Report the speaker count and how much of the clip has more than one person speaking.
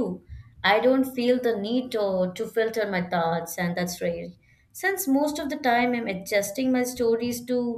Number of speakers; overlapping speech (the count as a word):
one, no overlap